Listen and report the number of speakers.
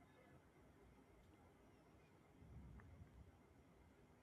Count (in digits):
0